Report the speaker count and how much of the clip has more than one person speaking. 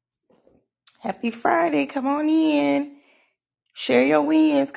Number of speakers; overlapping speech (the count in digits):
1, no overlap